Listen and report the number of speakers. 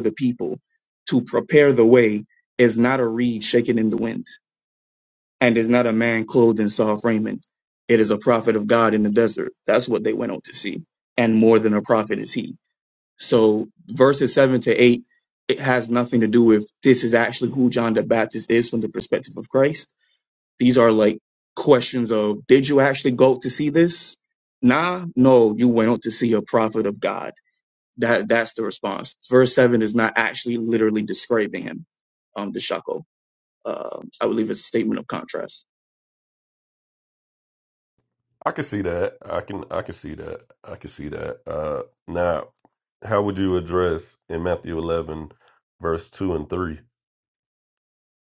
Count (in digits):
2